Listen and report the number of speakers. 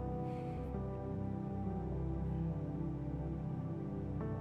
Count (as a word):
zero